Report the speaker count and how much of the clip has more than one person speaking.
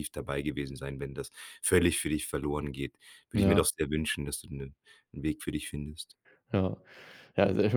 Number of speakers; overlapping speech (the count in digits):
2, about 4%